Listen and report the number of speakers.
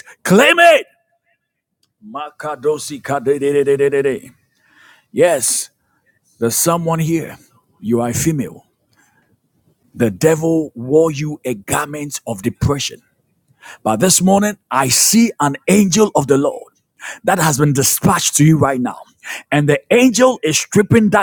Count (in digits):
1